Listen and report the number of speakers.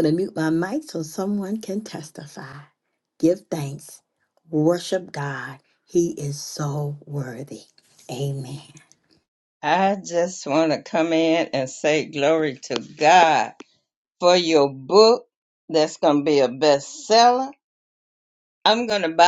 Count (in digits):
2